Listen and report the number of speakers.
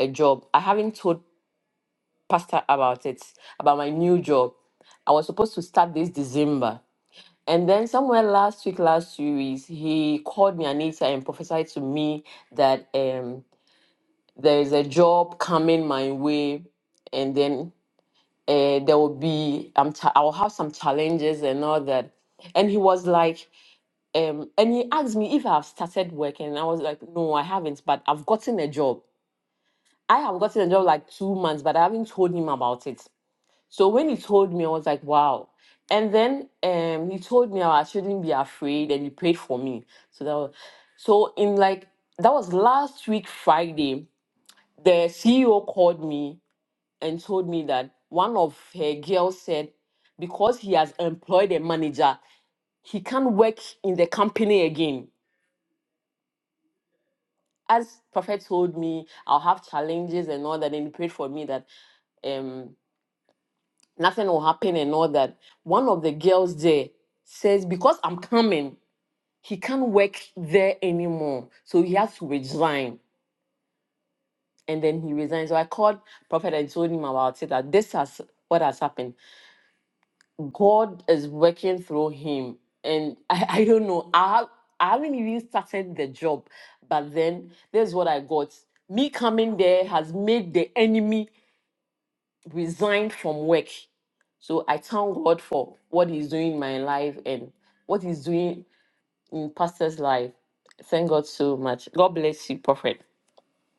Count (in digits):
1